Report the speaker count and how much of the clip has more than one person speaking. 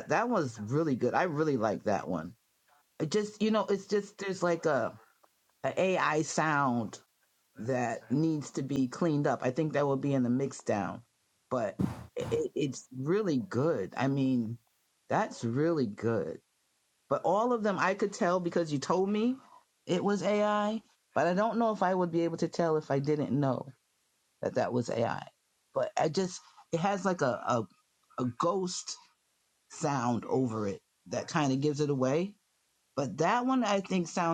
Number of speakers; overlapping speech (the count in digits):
1, no overlap